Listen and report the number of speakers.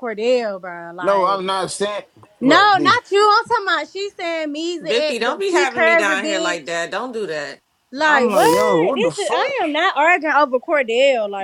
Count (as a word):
three